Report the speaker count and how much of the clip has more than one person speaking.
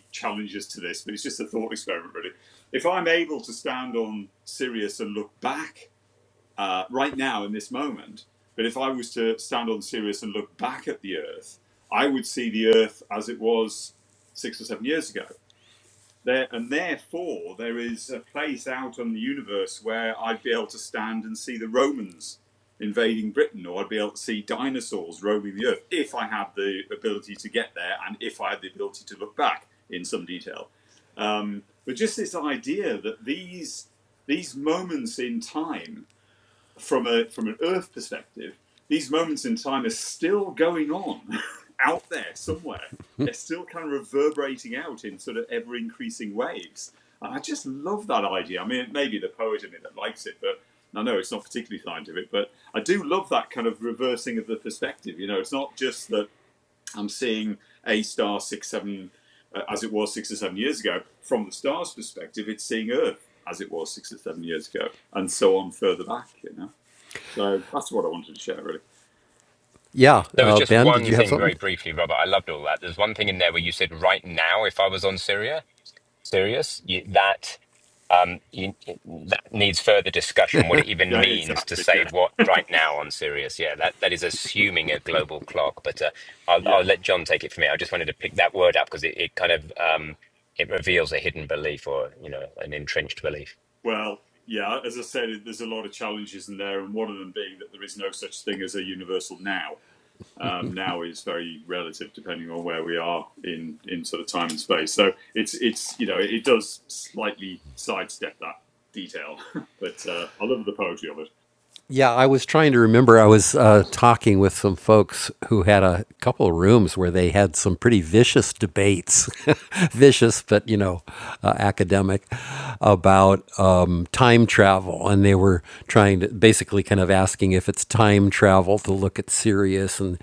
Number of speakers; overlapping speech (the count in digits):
3, about 2%